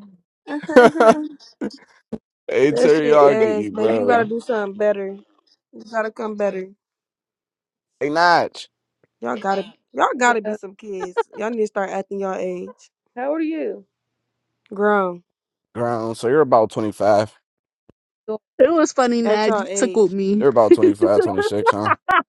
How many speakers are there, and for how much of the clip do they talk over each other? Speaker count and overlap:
four, about 11%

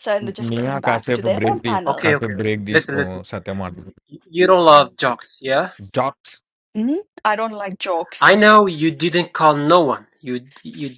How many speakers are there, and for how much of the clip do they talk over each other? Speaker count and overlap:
three, about 24%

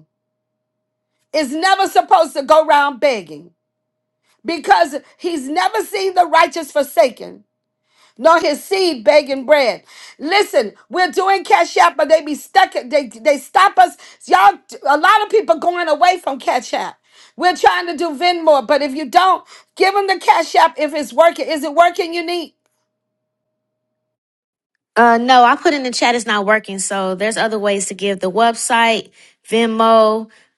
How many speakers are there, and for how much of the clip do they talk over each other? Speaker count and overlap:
two, no overlap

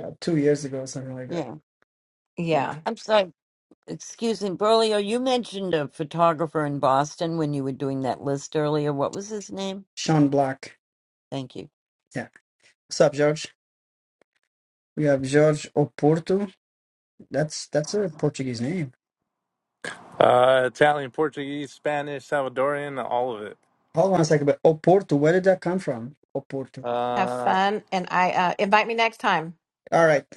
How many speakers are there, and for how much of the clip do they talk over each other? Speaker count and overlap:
four, about 2%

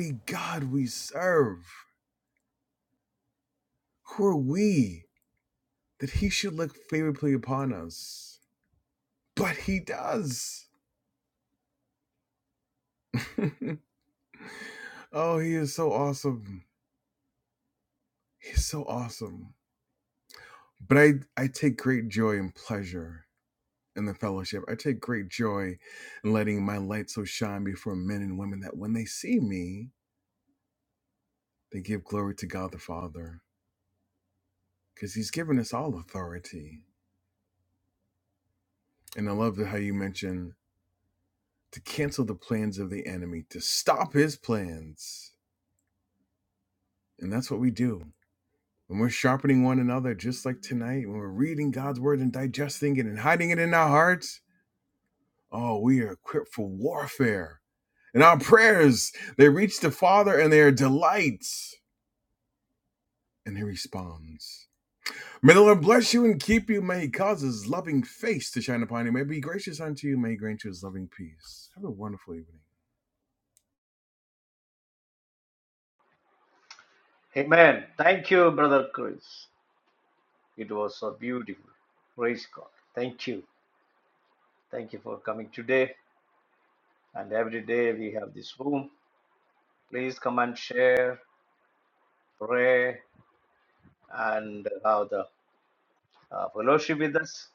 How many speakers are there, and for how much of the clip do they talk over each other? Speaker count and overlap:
two, no overlap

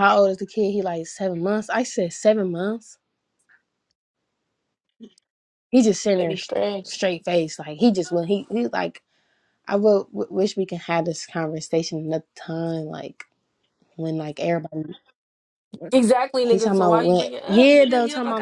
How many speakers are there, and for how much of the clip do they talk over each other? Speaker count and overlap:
two, about 12%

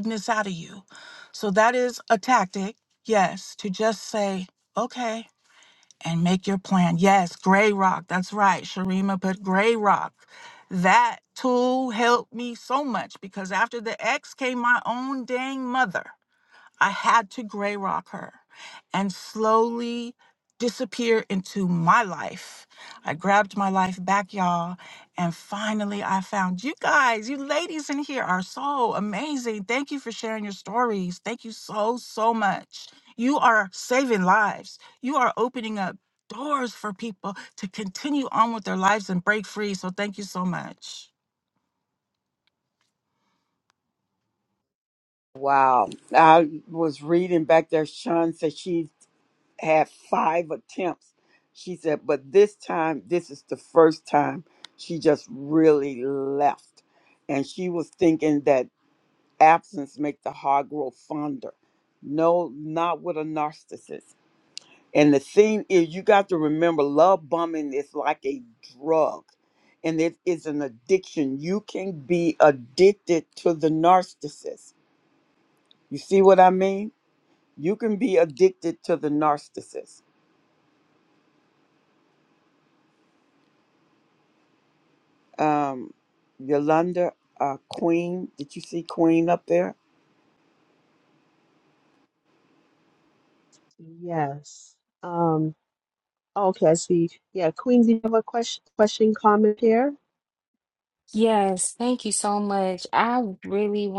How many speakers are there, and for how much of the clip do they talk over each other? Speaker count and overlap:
four, no overlap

